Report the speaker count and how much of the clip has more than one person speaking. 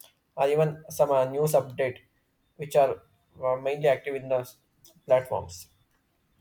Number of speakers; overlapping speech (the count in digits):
1, no overlap